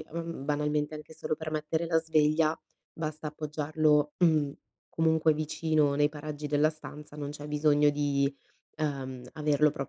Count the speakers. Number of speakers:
one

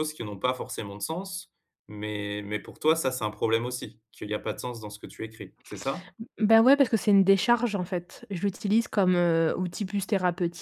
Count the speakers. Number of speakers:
two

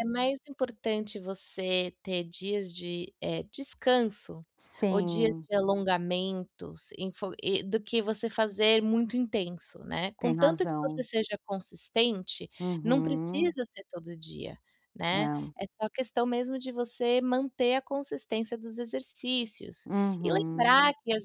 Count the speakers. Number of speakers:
two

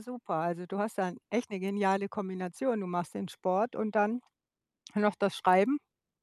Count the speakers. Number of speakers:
one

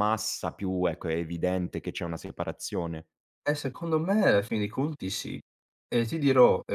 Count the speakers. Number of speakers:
two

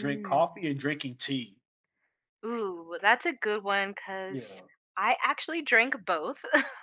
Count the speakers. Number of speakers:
two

